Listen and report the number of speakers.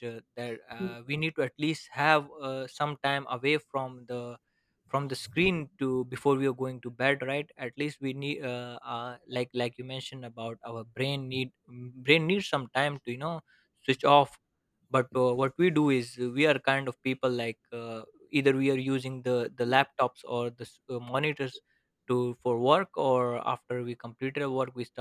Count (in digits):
1